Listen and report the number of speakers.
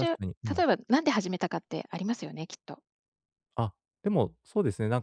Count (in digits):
2